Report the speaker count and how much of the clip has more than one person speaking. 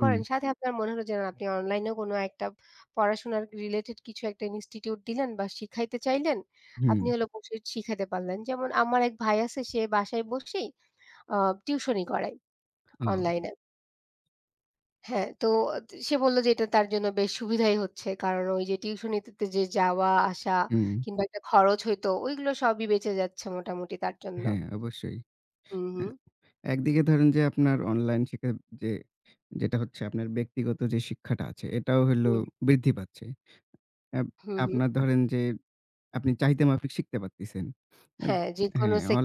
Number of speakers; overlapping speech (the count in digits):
2, about 4%